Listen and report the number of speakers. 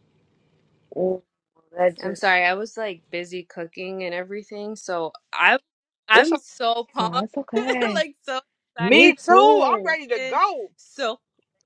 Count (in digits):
3